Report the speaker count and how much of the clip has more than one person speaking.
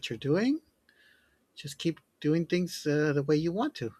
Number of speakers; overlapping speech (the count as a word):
one, no overlap